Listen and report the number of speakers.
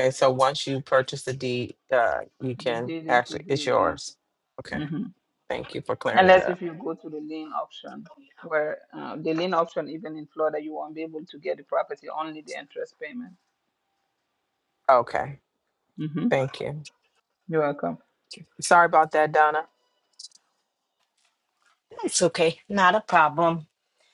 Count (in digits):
3